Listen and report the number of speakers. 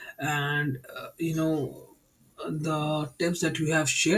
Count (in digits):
1